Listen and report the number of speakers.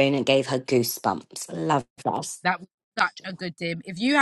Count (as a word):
two